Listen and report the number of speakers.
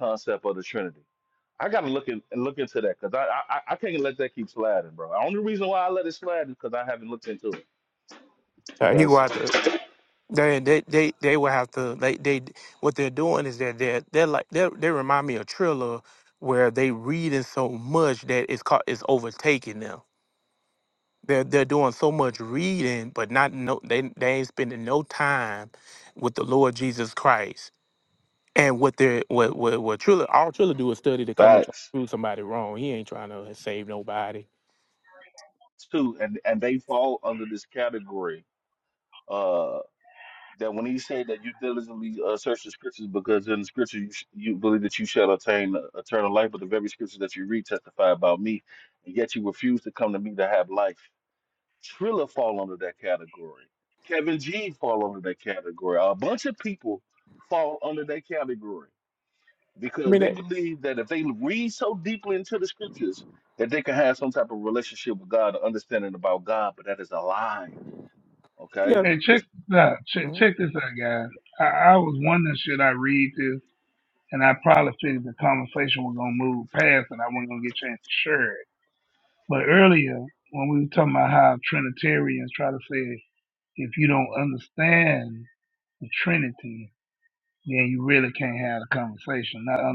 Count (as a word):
three